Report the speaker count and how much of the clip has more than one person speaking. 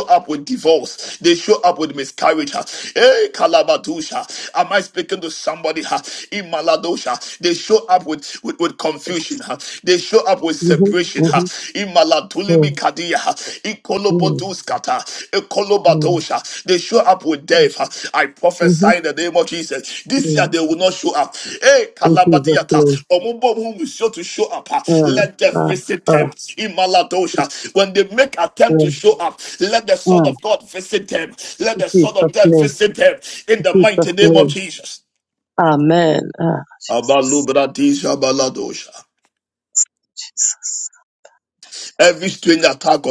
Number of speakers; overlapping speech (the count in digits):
2, about 16%